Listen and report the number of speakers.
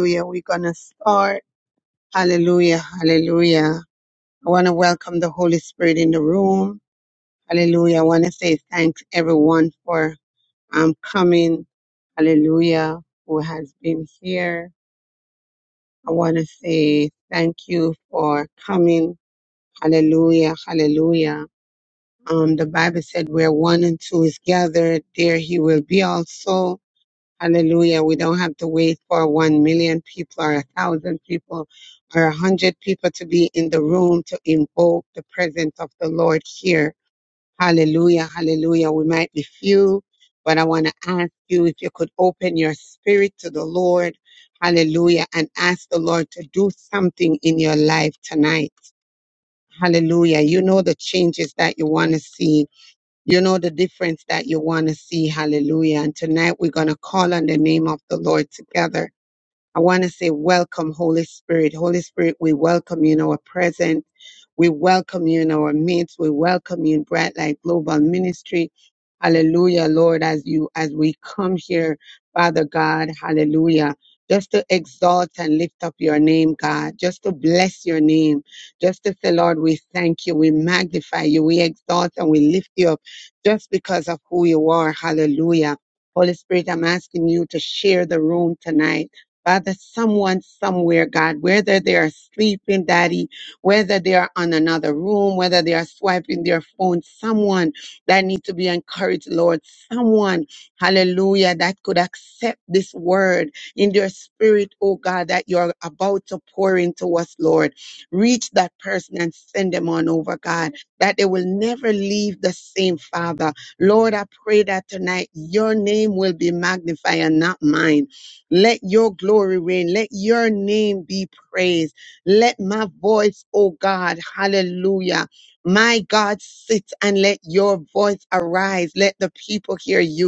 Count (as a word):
one